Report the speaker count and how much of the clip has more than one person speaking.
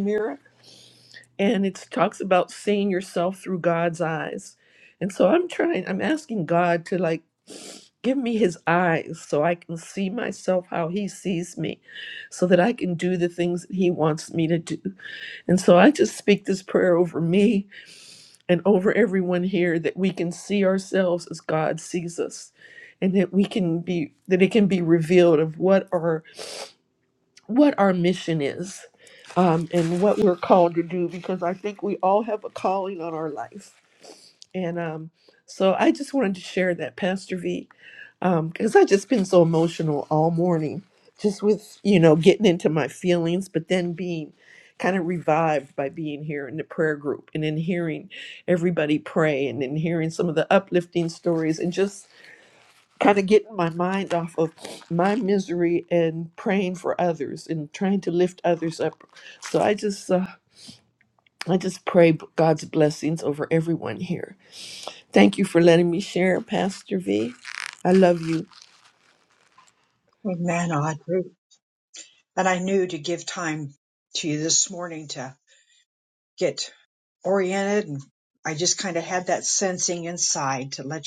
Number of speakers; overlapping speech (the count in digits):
2, no overlap